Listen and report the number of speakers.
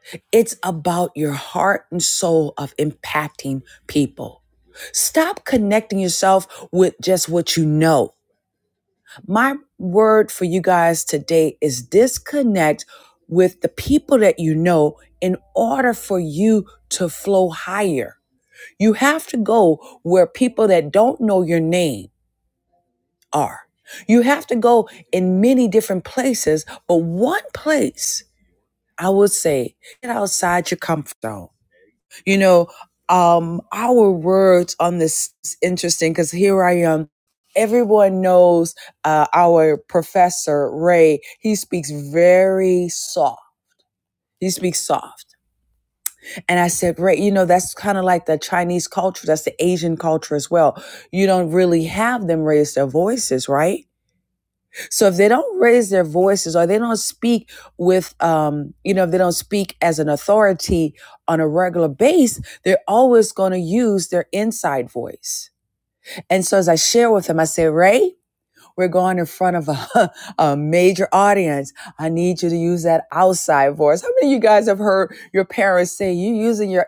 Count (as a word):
one